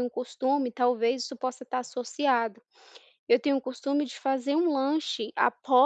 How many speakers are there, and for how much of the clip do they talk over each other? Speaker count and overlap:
one, no overlap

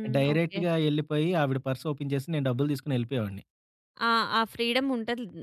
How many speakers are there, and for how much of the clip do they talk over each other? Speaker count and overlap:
two, about 10%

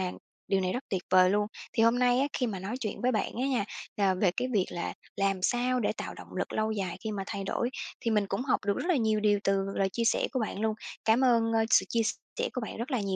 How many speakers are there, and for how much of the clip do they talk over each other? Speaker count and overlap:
one, no overlap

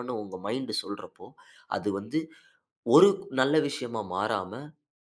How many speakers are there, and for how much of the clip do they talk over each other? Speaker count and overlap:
one, no overlap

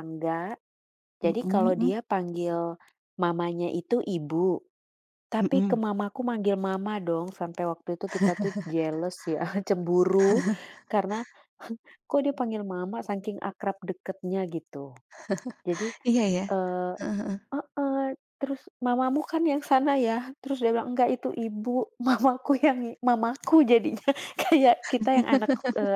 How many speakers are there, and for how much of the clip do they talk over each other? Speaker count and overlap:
two, about 3%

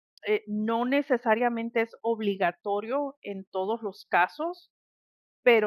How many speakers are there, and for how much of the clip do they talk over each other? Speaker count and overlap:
one, no overlap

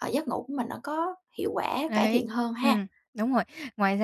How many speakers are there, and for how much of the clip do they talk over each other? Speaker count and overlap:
two, about 13%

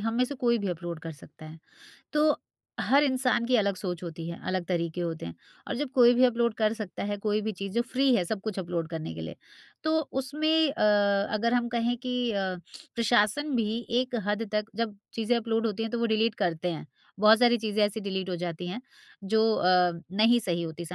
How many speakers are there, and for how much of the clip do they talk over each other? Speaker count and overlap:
one, no overlap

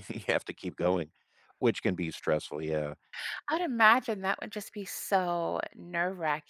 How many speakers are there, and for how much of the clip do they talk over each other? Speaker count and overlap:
two, no overlap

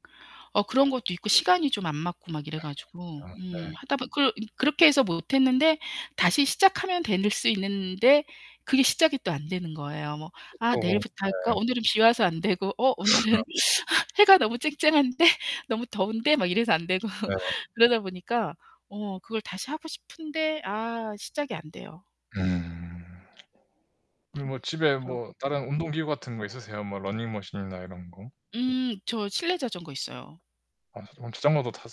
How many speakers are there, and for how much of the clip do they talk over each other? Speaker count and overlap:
two, about 5%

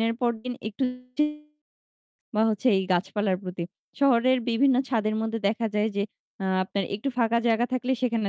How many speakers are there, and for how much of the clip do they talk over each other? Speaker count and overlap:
one, no overlap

